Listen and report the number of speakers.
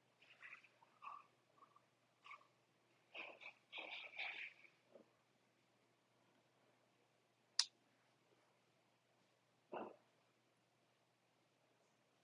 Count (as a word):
zero